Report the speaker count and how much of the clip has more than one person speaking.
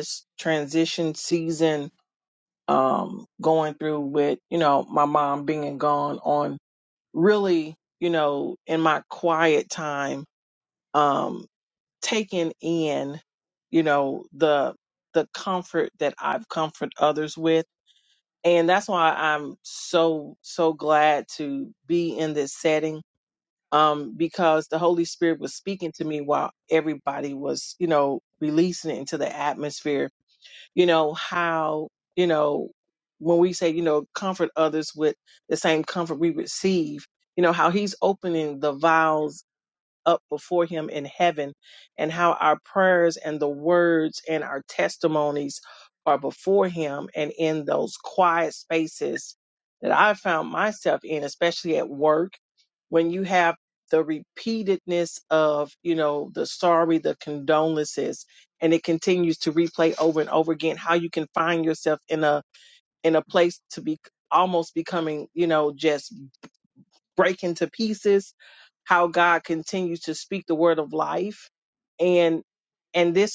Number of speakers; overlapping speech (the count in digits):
1, no overlap